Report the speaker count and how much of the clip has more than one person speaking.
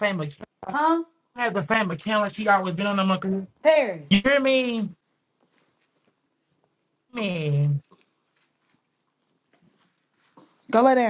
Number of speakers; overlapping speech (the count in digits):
2, no overlap